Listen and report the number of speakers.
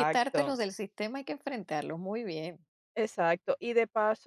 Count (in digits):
2